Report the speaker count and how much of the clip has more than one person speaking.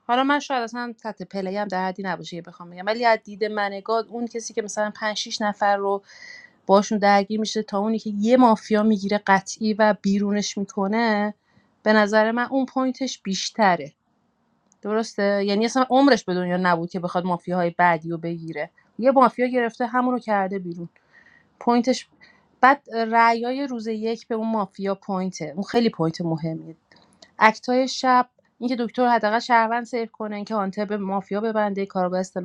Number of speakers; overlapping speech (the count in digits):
1, no overlap